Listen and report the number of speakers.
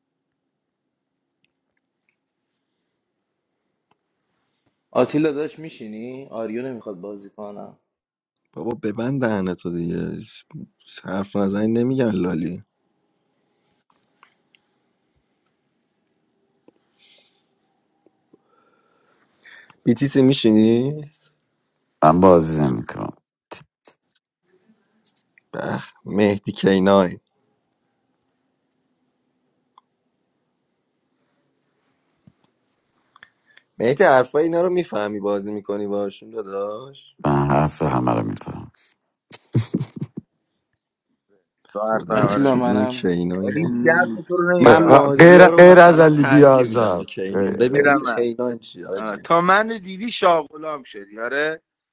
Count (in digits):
4